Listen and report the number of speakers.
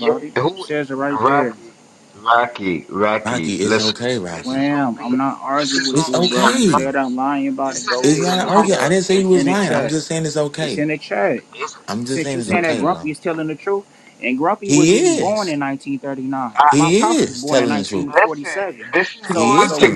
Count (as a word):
three